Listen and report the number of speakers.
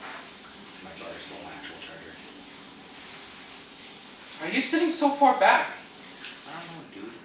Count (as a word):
two